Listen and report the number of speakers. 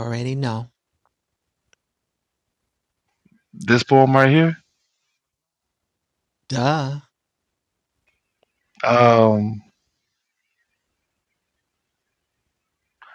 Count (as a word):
two